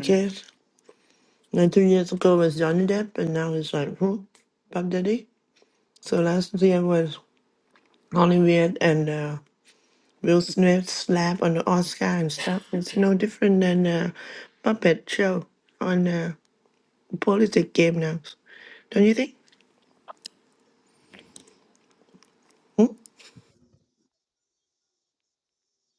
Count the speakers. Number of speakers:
1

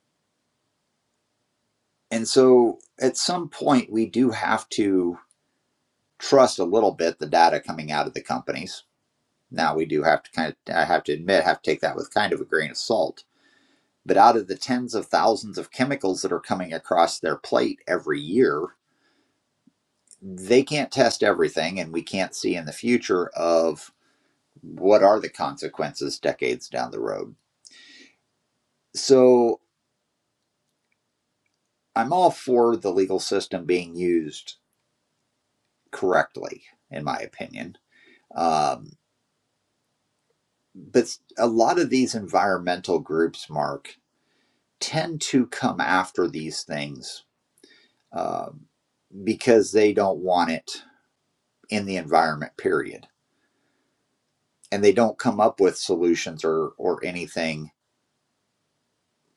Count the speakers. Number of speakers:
1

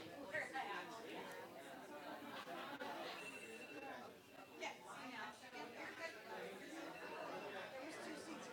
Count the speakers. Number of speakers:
0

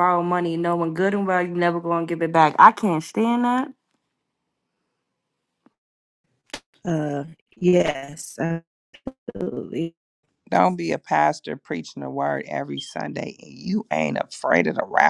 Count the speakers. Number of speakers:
3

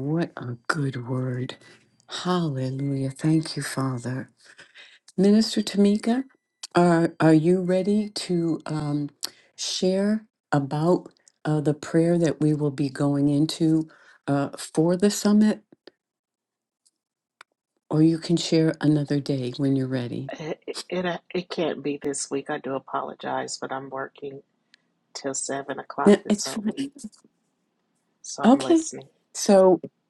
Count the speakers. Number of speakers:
2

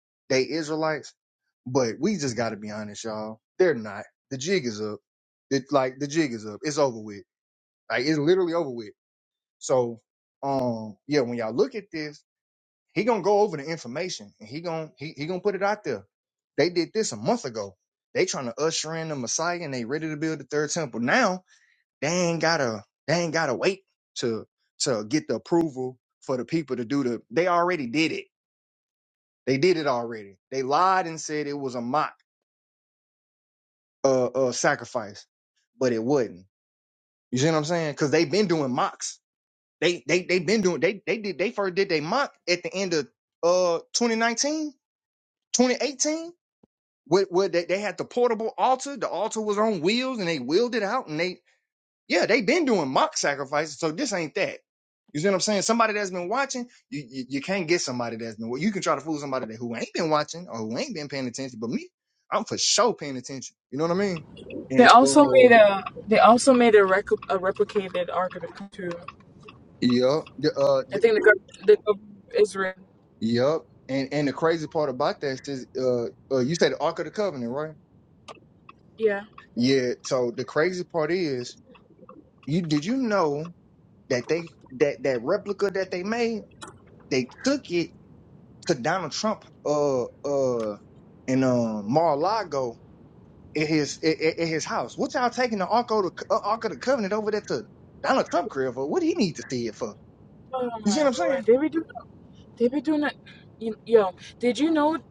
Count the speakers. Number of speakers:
2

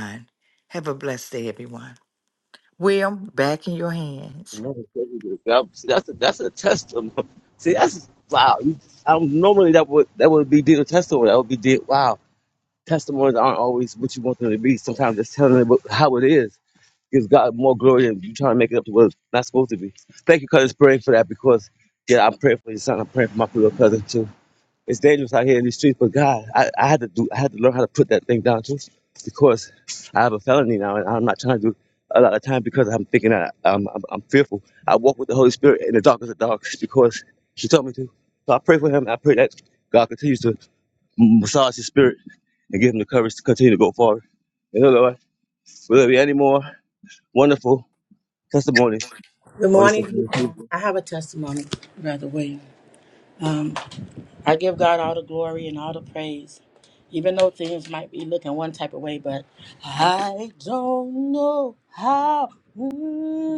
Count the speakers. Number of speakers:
3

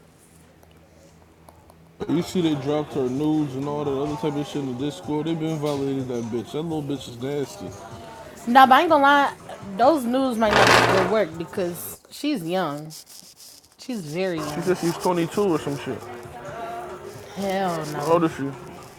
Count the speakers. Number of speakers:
2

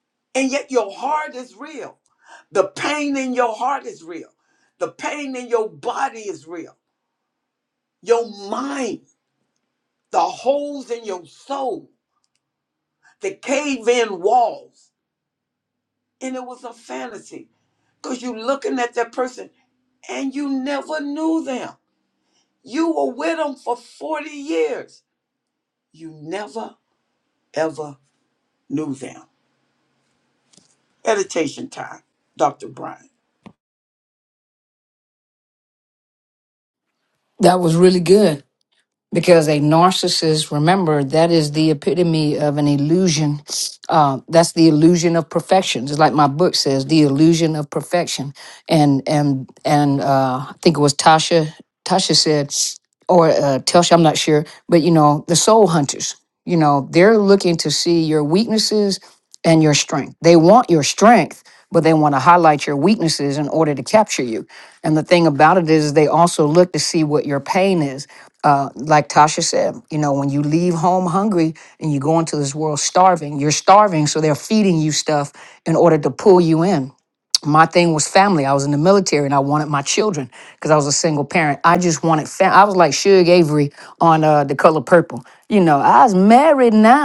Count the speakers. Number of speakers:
2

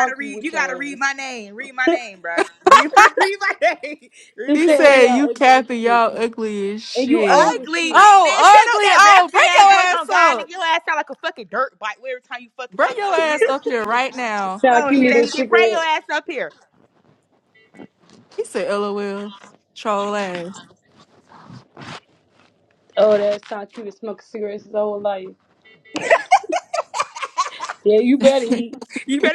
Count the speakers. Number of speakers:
3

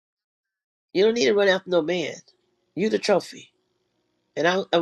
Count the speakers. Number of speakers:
1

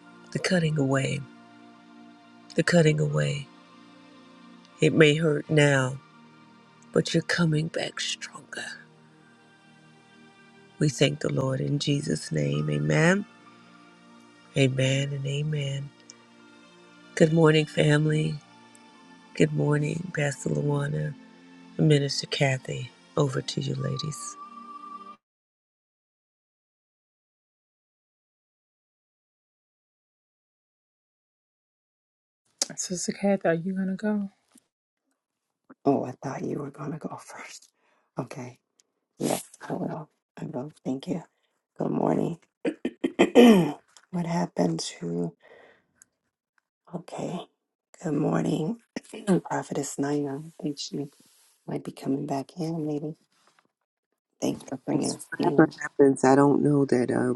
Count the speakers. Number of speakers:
3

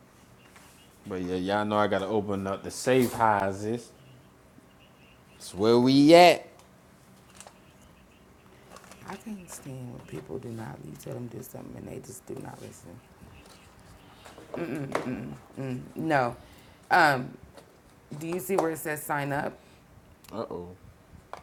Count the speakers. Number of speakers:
2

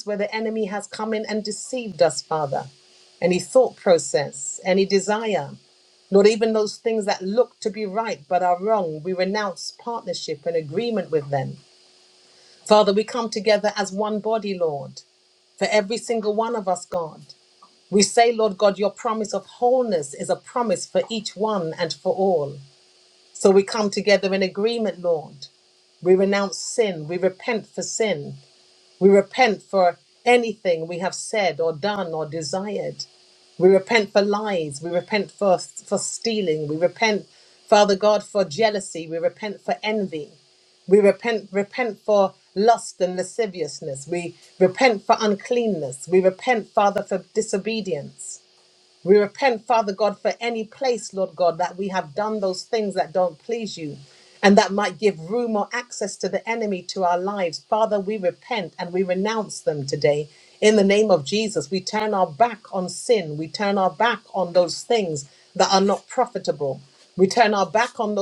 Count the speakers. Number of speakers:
1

